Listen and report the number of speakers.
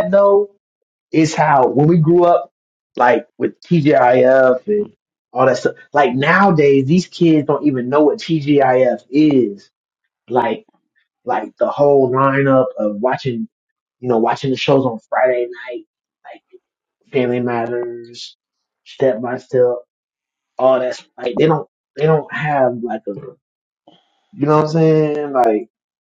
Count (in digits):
1